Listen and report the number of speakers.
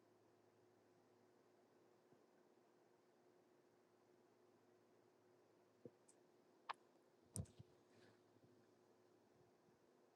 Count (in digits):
0